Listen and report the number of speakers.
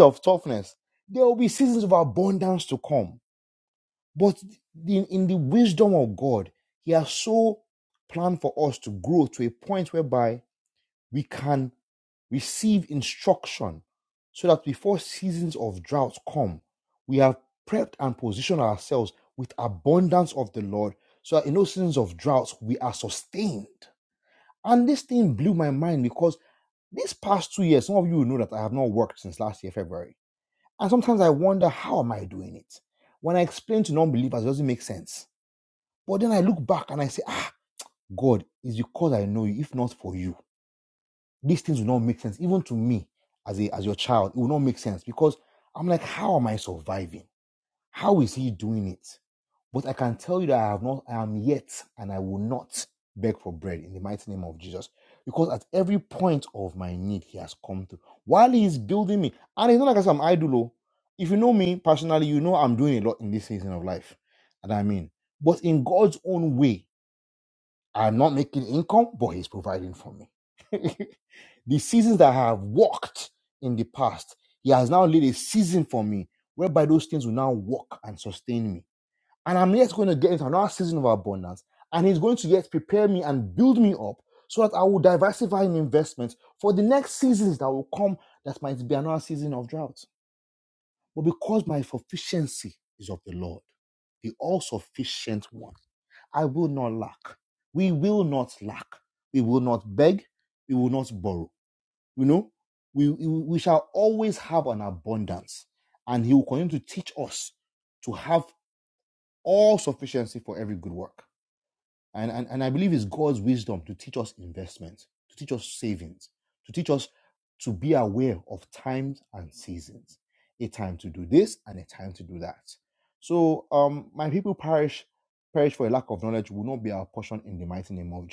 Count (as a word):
one